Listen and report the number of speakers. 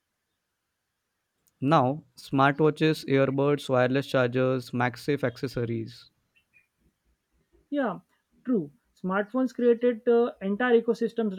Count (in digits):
2